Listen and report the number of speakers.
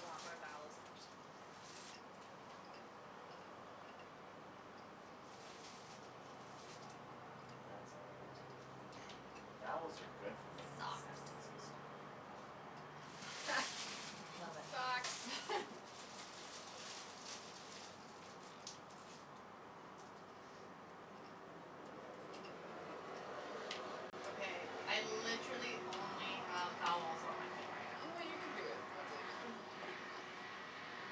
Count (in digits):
4